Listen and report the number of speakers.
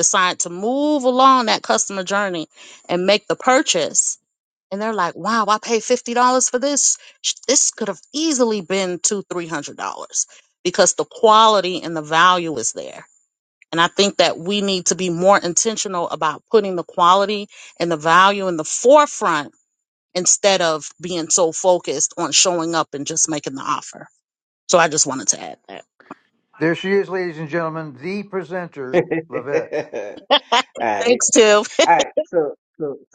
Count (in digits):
3